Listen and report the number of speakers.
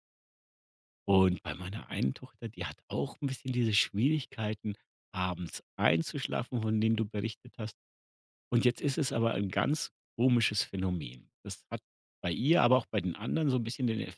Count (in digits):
1